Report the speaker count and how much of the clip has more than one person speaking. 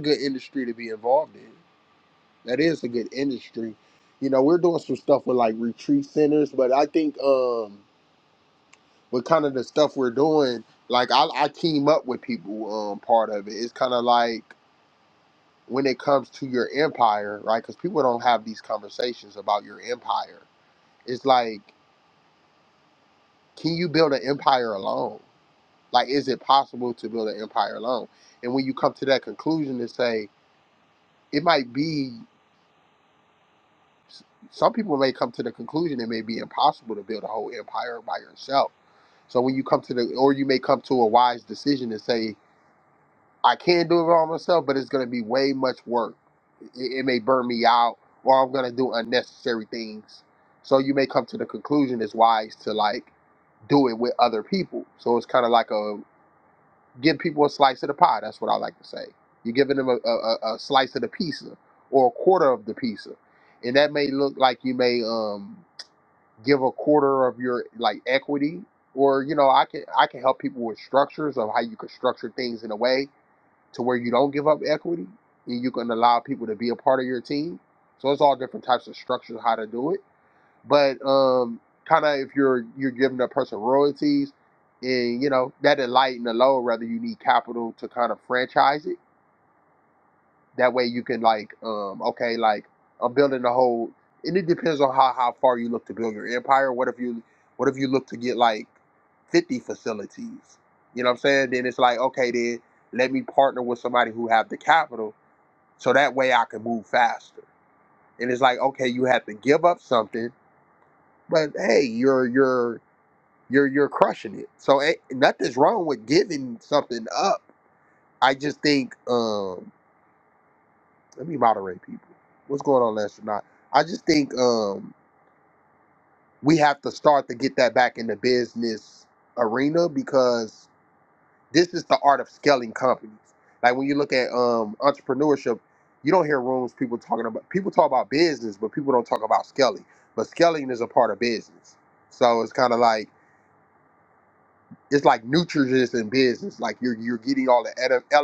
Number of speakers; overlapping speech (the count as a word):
one, no overlap